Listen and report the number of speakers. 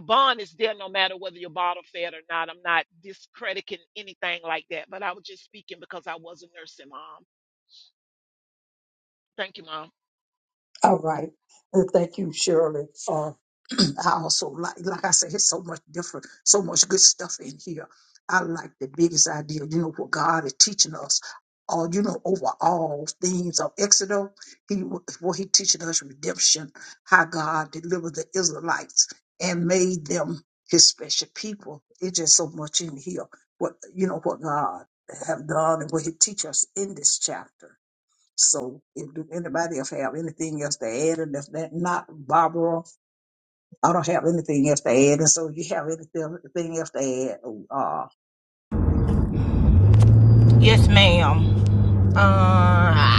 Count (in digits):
3